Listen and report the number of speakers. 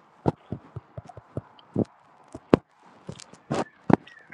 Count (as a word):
zero